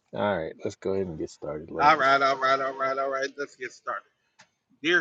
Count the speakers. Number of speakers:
2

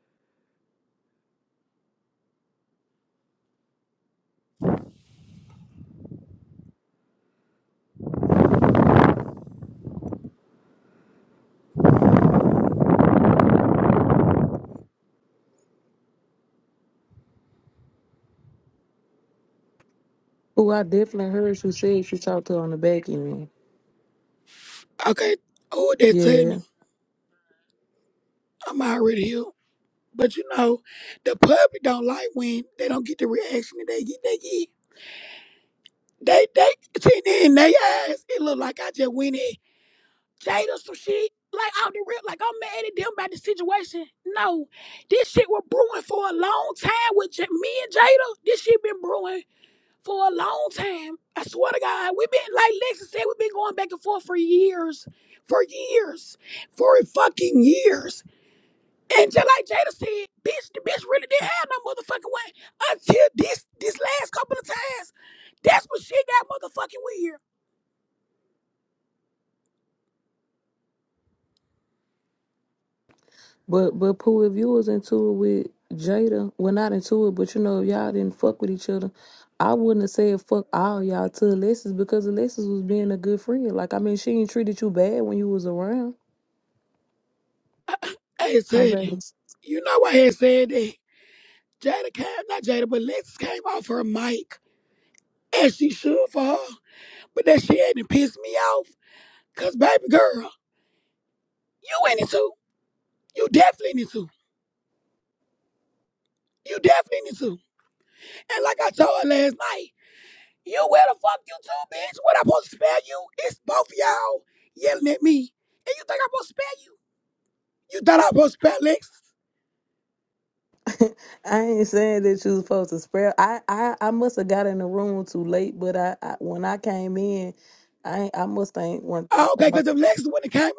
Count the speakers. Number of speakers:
2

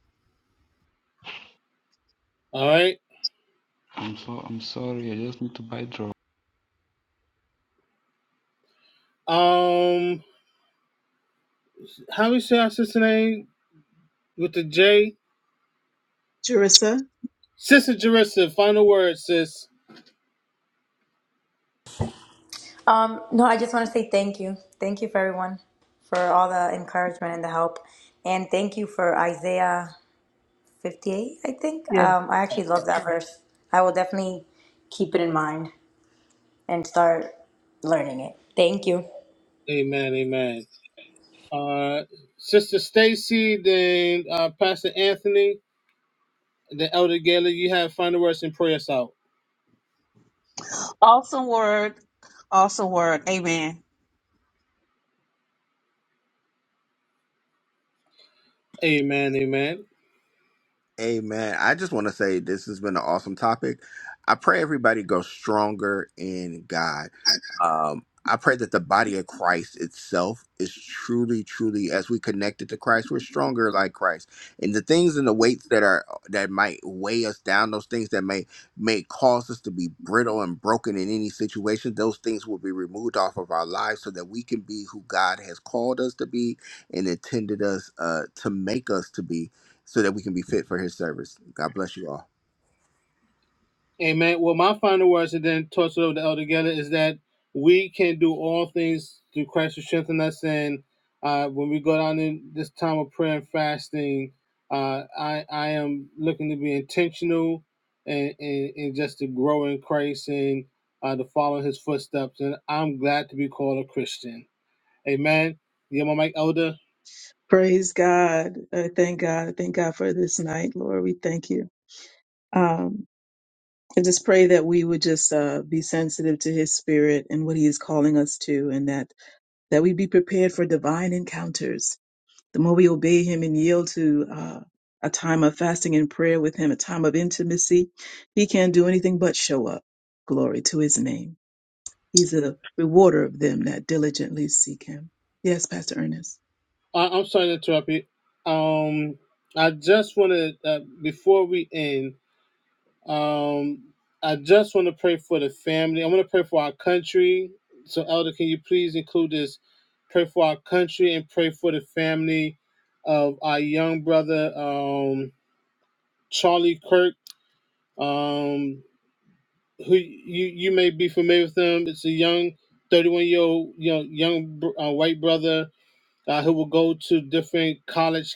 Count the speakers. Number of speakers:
6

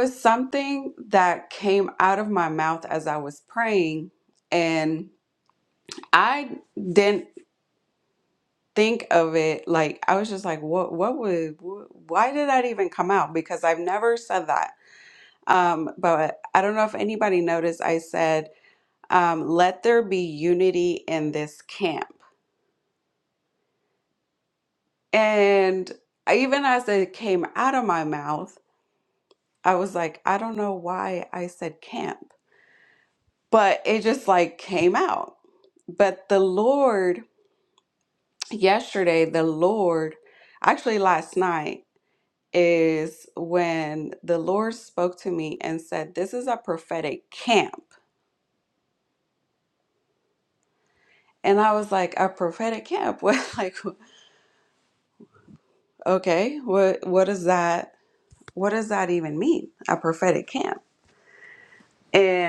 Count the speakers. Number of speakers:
1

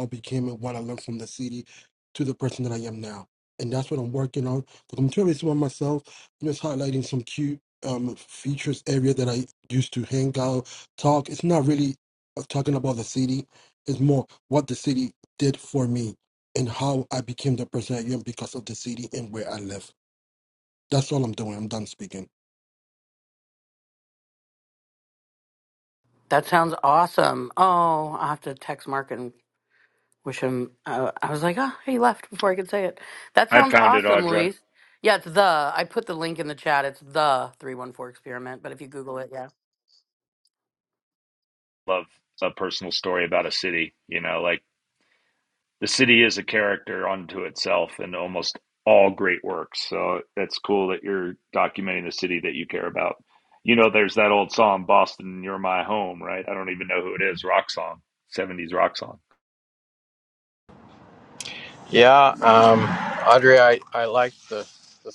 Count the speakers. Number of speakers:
4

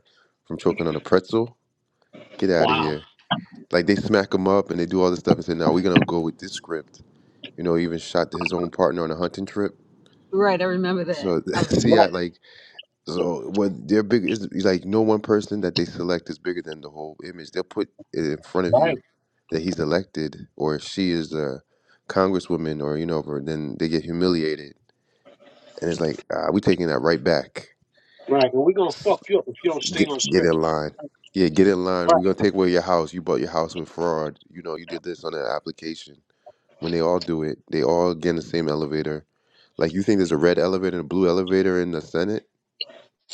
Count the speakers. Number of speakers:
3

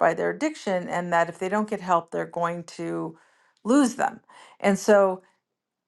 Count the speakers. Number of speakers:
1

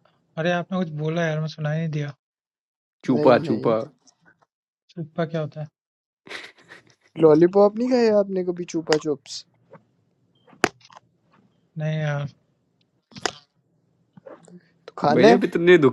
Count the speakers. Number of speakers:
3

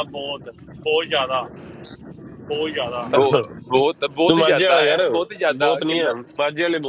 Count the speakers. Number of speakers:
3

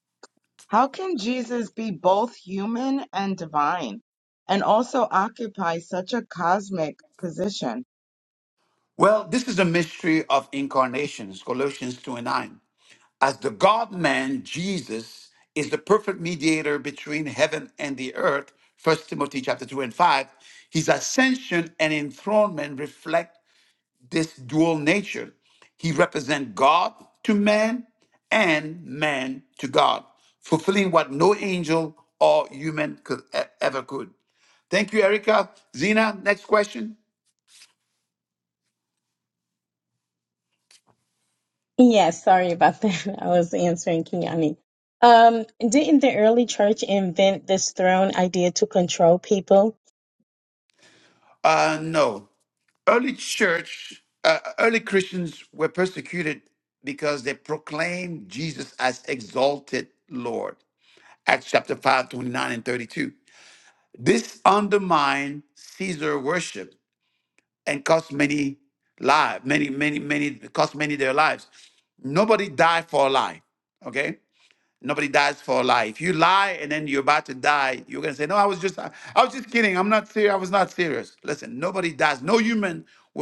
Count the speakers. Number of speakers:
3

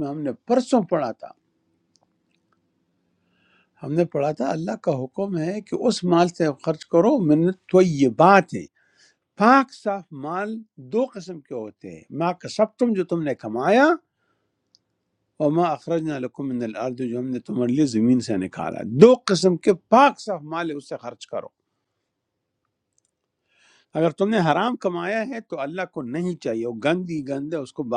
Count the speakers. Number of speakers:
1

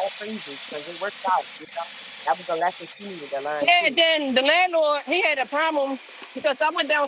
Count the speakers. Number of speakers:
2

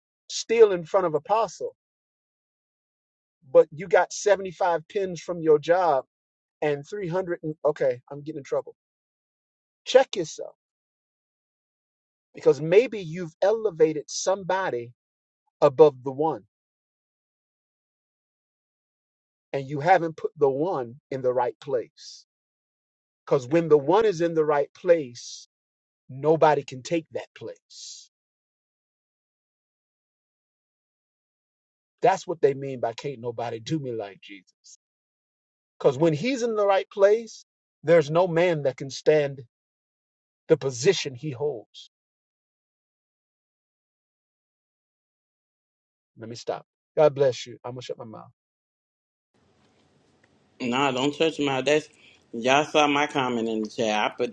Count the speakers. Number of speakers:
2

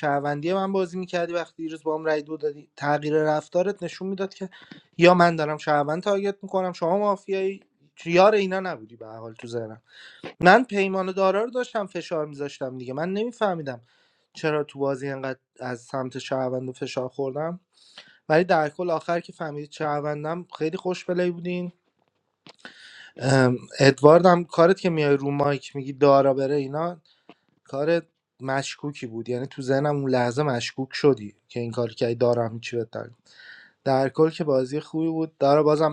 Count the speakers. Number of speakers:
1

